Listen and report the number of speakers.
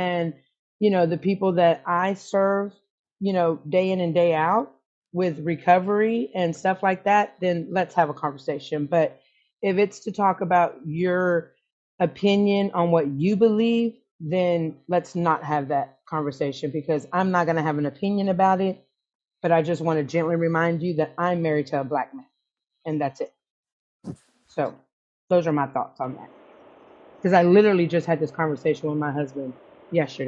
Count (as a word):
one